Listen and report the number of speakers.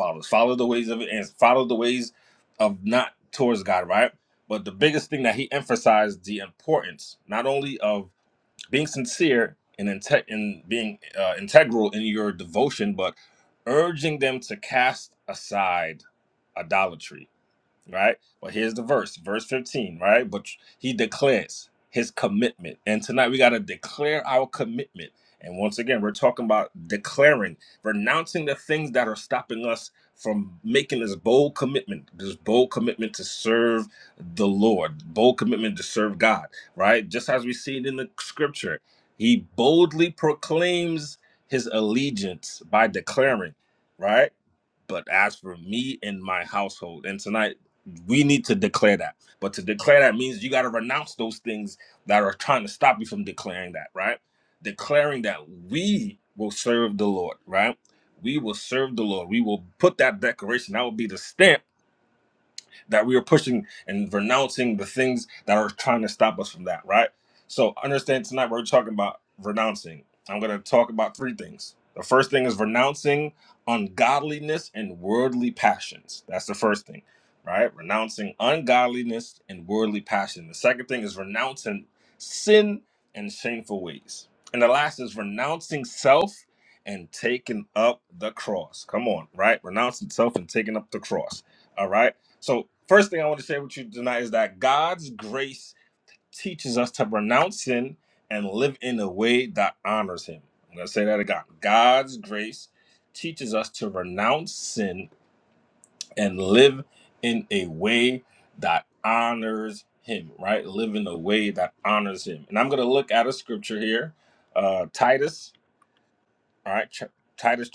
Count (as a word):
one